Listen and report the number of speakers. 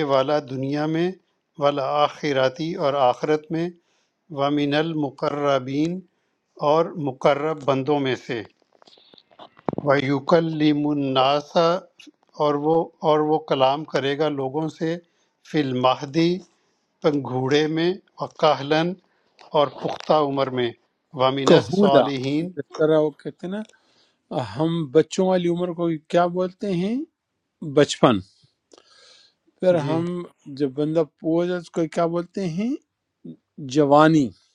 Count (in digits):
2